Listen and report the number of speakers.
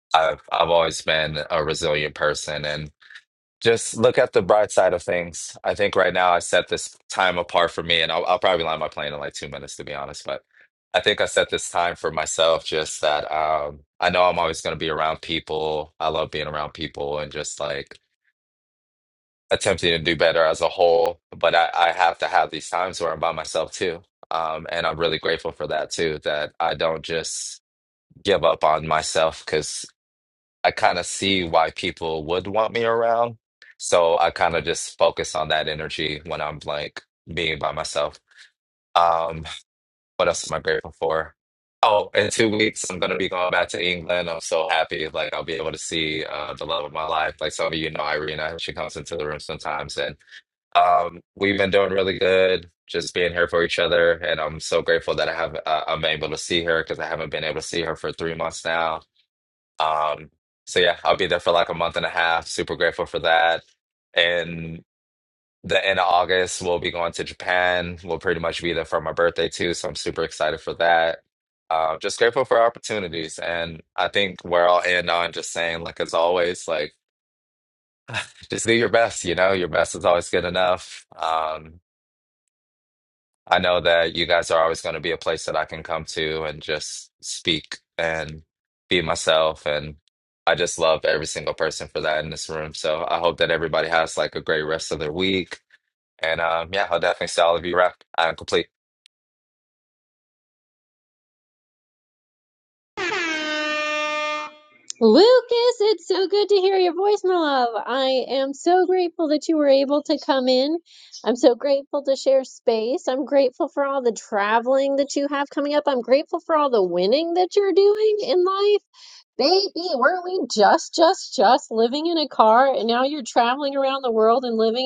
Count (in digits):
2